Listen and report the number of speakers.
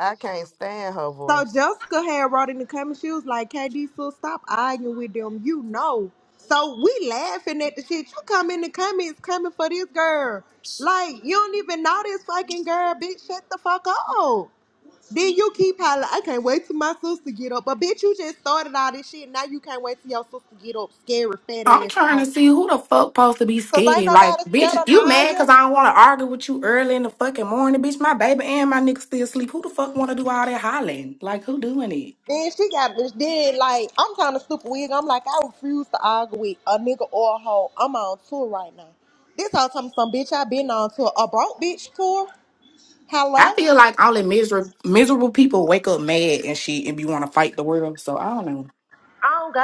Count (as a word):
three